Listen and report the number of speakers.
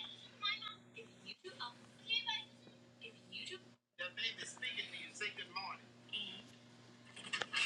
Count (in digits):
0